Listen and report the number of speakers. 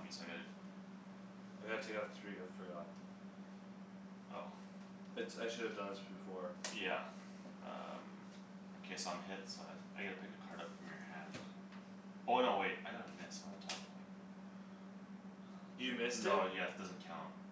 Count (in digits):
2